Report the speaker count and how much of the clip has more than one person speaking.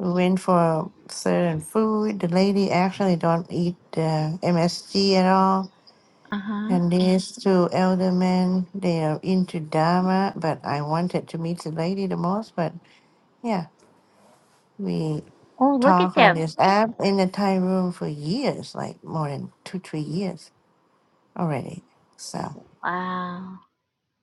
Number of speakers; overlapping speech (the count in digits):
2, about 3%